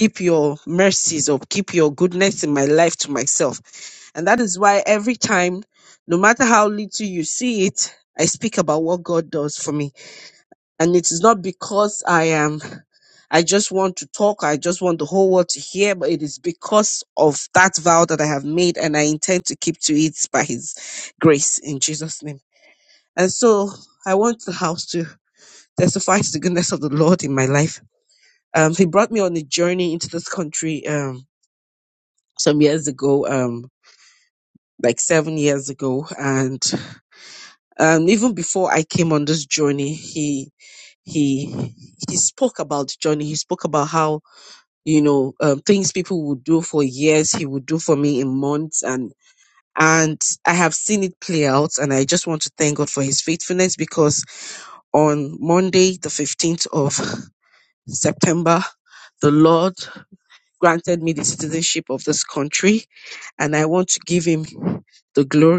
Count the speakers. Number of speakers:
1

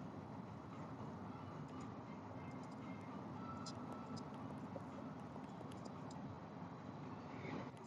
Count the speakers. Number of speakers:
0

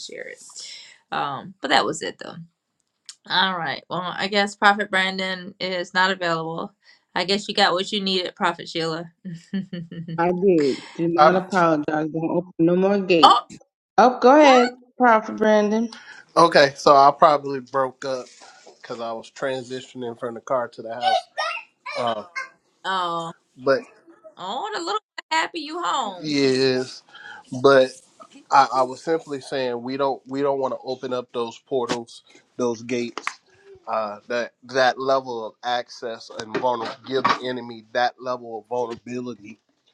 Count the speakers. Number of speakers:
3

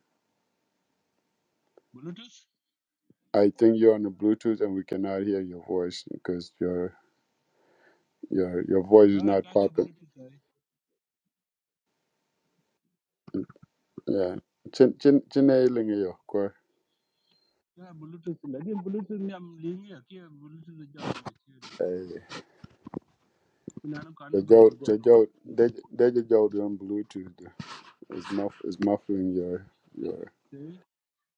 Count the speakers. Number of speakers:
2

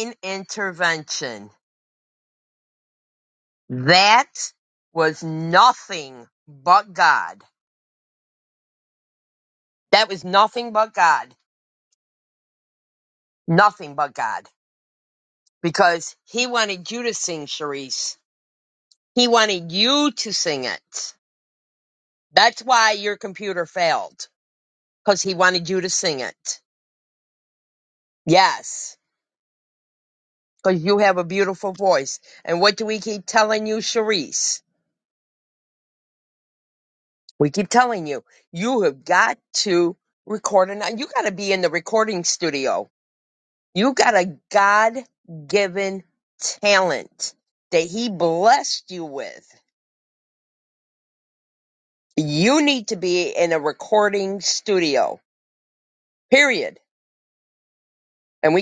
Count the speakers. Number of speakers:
1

